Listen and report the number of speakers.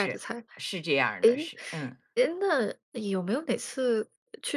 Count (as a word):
two